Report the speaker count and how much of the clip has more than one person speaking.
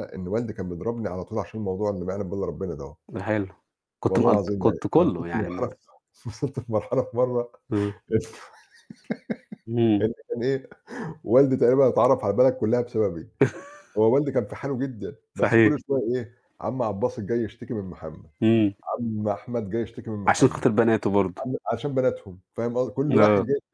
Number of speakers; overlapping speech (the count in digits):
2, about 12%